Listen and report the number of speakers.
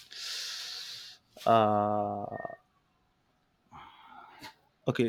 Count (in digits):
1